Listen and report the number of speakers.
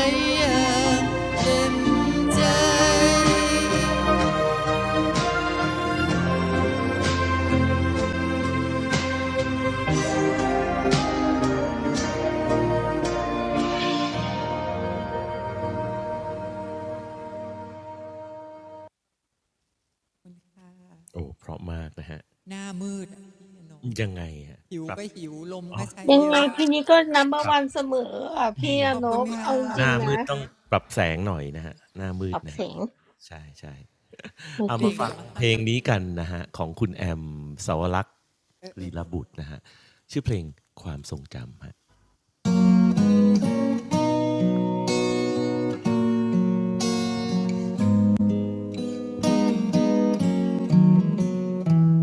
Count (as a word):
three